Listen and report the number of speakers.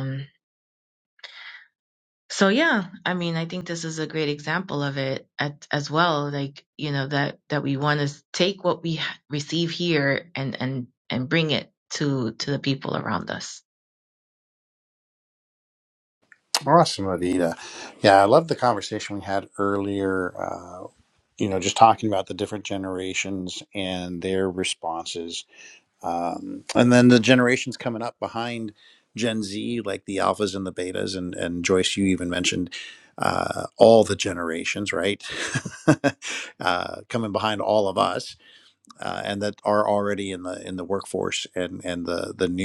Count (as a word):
two